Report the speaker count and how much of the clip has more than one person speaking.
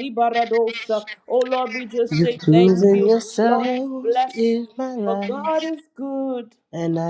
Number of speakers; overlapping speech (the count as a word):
two, about 35%